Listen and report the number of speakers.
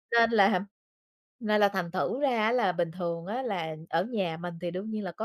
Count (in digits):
1